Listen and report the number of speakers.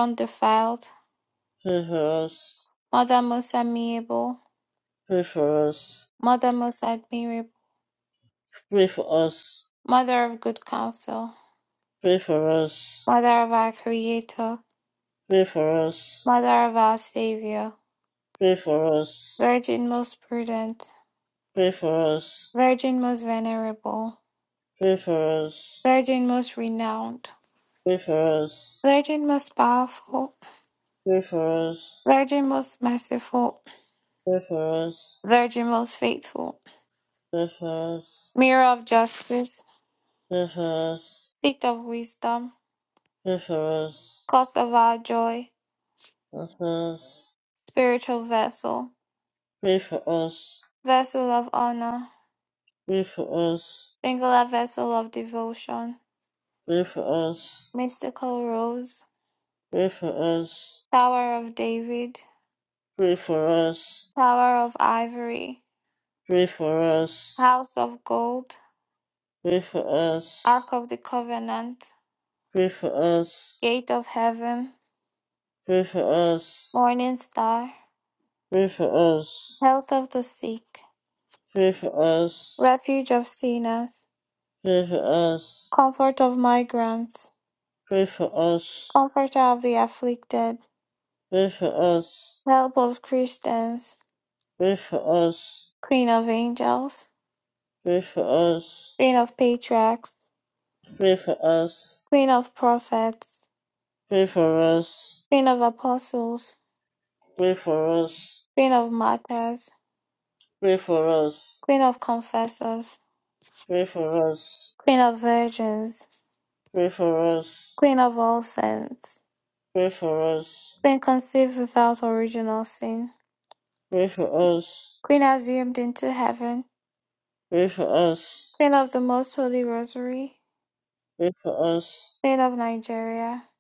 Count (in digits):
2